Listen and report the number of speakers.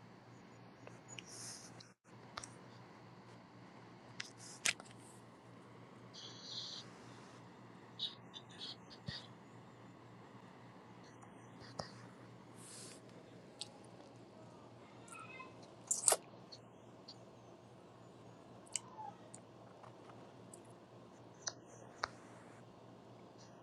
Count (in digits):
0